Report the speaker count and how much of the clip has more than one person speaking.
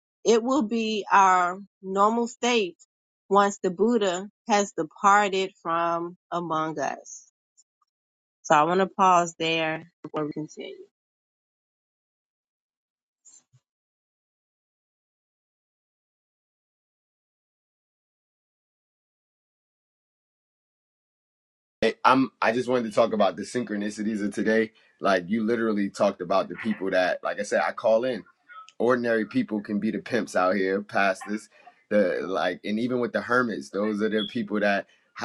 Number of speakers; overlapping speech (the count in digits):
2, no overlap